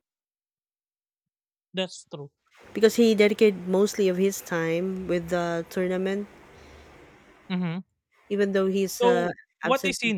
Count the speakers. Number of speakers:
2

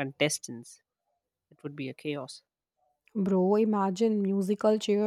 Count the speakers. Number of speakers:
2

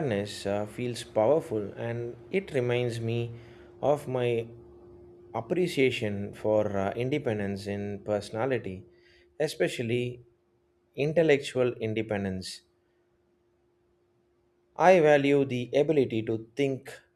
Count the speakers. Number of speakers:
1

